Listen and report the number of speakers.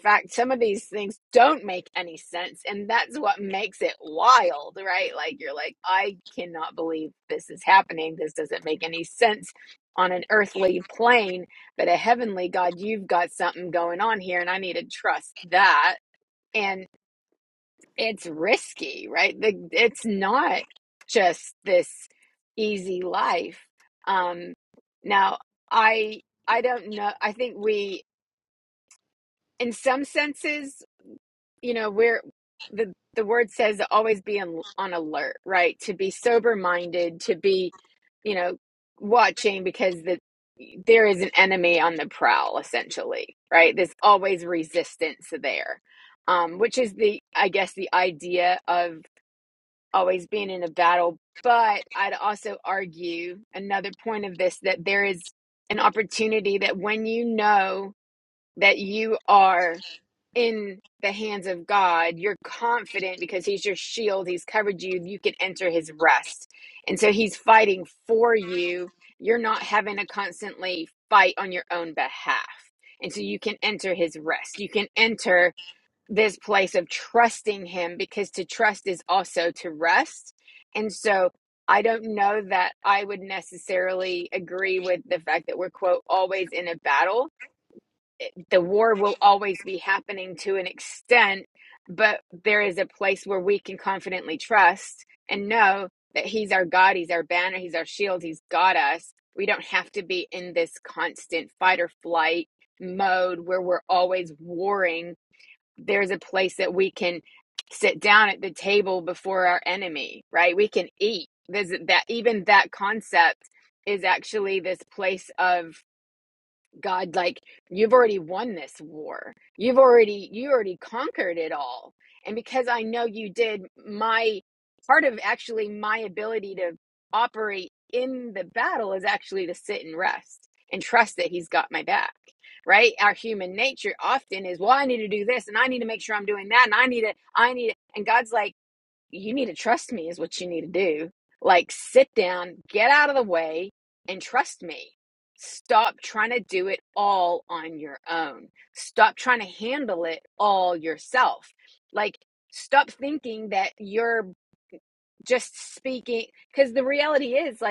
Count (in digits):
1